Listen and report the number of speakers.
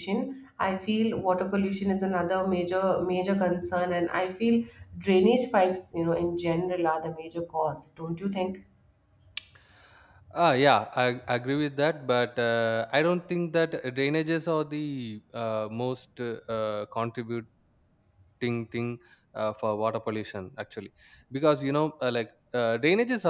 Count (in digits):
2